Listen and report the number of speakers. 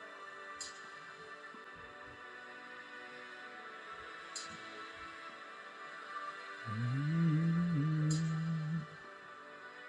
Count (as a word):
zero